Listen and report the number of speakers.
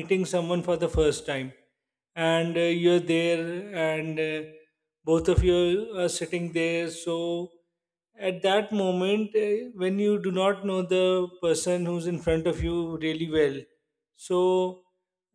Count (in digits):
1